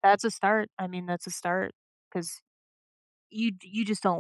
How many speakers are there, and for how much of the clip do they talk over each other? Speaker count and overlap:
1, no overlap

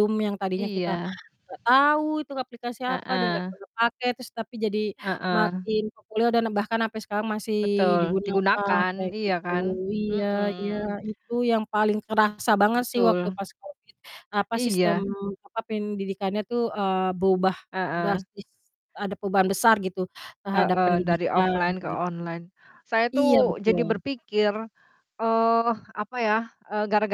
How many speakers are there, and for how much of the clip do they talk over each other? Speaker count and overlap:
2, about 25%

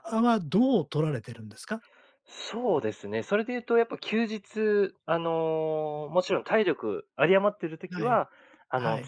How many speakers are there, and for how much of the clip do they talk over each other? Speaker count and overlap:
2, about 6%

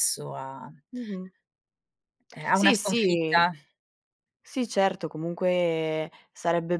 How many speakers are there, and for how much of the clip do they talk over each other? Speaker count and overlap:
2, about 13%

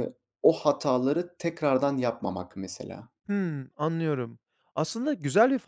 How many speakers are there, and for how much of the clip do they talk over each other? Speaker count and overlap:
2, no overlap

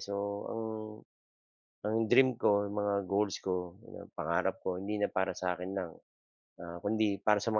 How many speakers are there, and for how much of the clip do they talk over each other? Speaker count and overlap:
1, no overlap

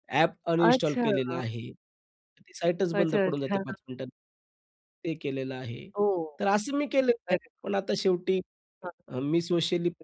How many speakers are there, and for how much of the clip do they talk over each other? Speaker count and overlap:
2, about 14%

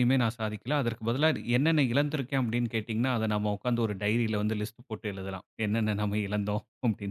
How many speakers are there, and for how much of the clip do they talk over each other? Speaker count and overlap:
1, no overlap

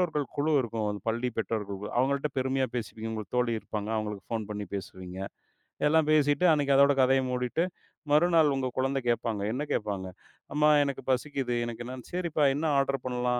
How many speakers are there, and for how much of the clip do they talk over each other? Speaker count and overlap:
1, no overlap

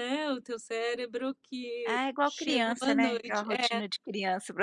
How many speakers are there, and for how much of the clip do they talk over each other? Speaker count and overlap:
2, about 43%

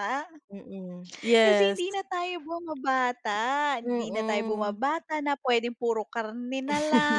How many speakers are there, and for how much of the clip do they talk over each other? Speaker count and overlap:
2, about 18%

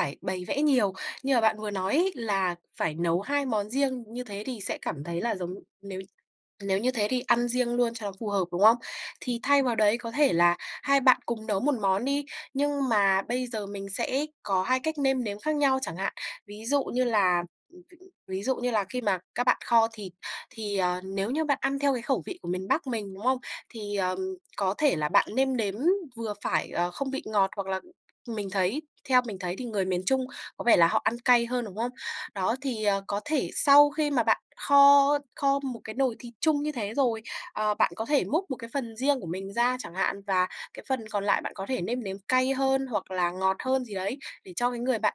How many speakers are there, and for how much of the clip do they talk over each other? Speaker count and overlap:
1, no overlap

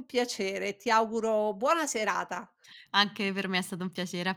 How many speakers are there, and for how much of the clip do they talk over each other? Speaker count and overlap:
2, no overlap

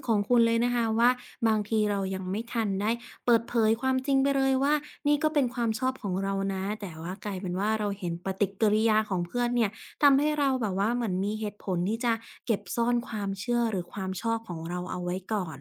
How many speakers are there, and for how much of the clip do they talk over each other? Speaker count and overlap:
1, no overlap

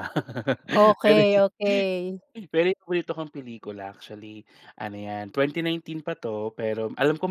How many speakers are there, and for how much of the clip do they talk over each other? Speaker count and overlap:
2, about 3%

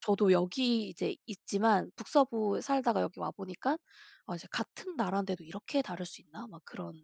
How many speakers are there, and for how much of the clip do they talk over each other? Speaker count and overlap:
1, no overlap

